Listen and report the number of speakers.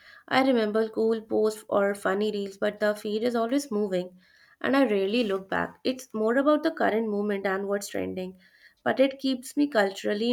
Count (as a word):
one